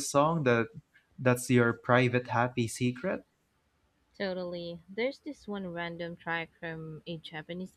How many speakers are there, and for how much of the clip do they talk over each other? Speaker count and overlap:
two, no overlap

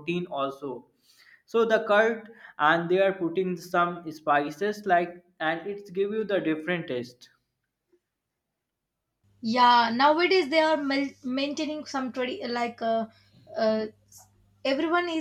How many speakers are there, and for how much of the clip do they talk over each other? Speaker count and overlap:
two, no overlap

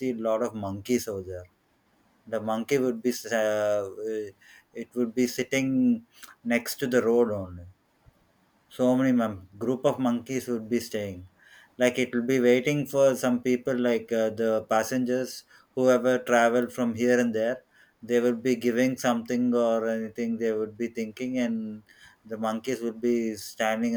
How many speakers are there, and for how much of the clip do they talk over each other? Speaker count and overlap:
one, no overlap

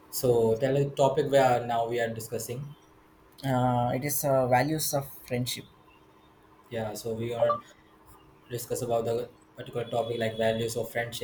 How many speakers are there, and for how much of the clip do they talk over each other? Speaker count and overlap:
two, no overlap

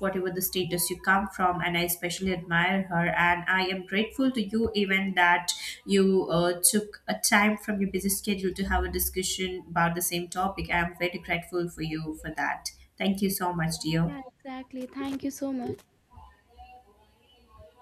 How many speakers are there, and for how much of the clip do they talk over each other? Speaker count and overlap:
two, about 1%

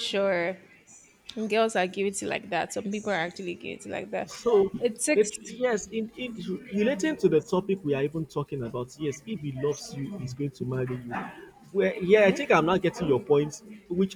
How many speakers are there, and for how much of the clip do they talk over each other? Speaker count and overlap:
two, about 4%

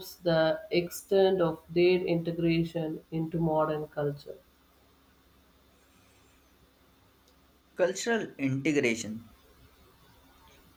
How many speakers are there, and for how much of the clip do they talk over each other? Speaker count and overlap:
two, no overlap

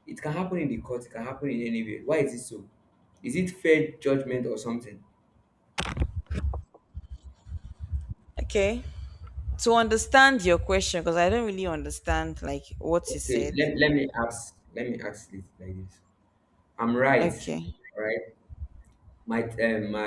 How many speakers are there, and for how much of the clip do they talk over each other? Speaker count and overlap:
two, about 3%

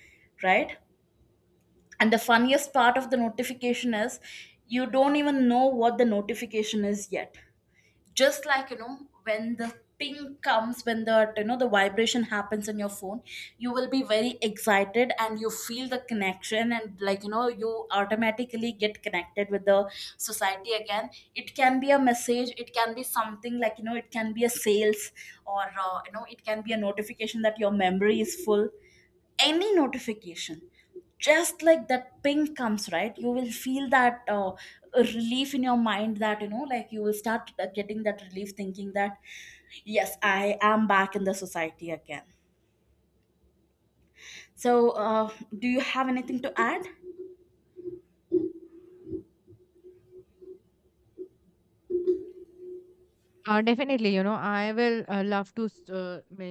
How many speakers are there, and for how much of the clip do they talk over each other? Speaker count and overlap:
two, no overlap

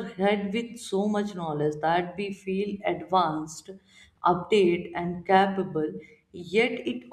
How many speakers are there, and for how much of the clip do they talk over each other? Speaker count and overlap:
one, no overlap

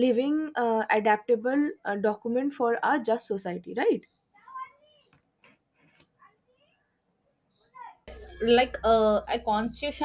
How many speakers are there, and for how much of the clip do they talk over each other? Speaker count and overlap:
two, no overlap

